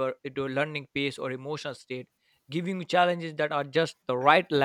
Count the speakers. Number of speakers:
one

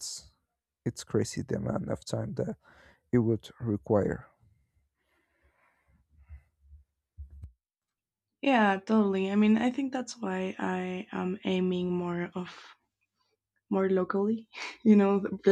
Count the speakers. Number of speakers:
two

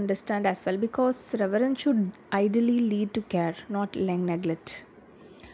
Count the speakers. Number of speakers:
one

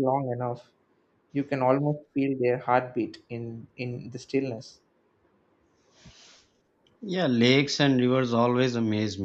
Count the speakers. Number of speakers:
two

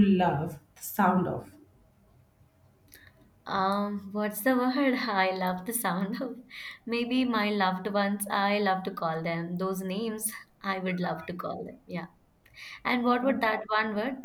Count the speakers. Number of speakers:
two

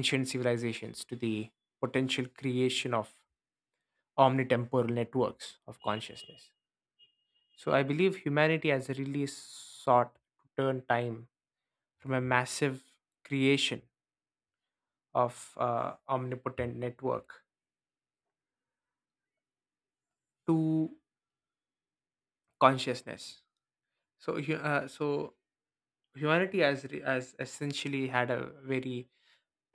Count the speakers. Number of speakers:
one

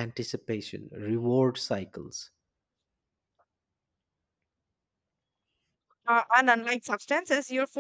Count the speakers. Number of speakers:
two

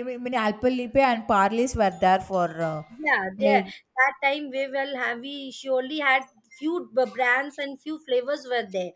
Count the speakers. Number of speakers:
two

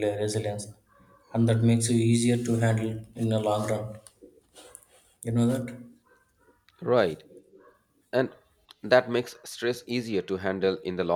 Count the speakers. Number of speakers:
two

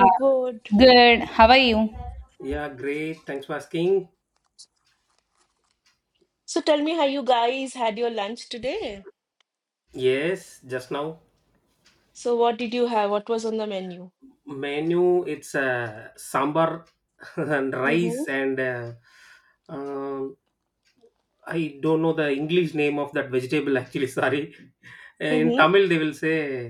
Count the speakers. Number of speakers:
three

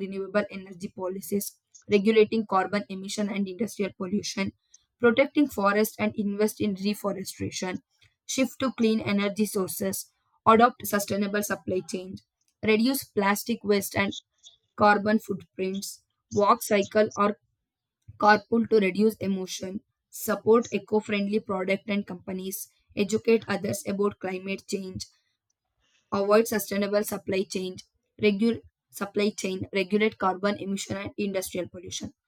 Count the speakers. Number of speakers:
one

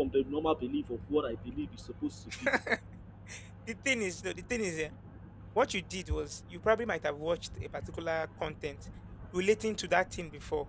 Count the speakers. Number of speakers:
two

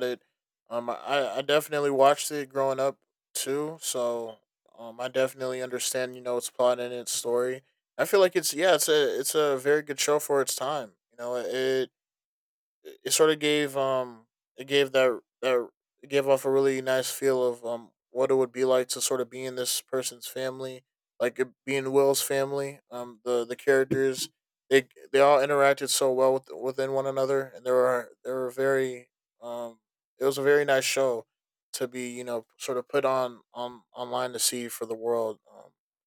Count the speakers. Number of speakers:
one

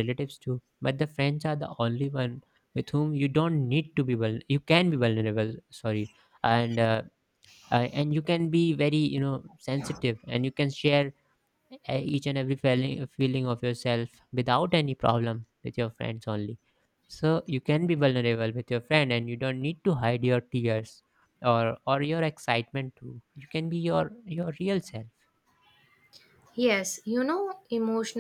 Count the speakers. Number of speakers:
two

